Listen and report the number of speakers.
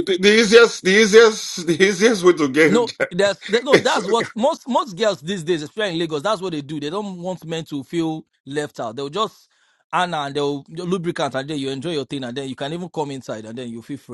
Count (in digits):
2